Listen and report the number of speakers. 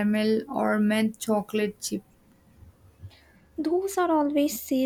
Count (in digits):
2